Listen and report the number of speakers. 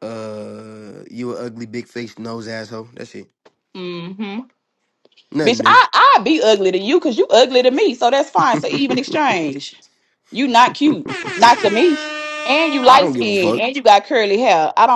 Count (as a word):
two